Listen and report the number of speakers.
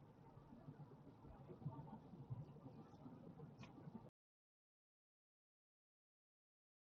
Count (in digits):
0